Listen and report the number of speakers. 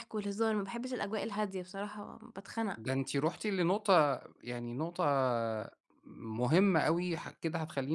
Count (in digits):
2